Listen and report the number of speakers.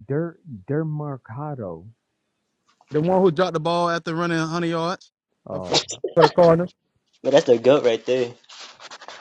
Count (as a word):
three